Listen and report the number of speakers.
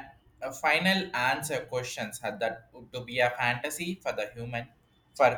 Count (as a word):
one